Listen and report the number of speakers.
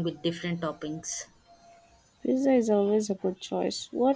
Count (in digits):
2